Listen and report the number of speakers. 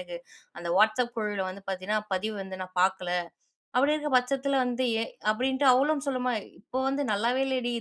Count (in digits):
1